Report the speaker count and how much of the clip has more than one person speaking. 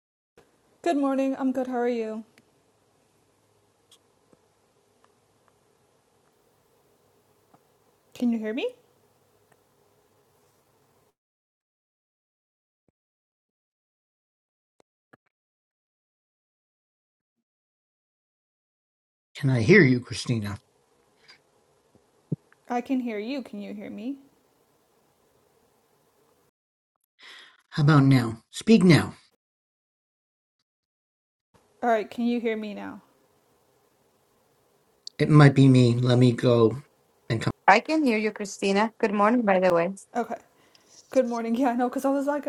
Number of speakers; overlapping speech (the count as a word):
three, no overlap